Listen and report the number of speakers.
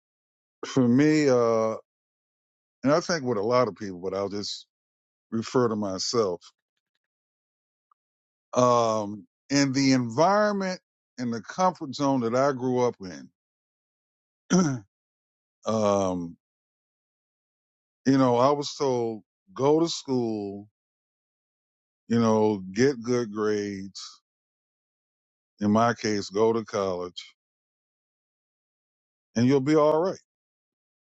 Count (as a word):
one